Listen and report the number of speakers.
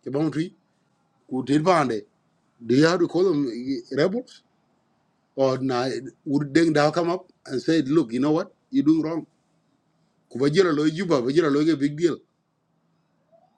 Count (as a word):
one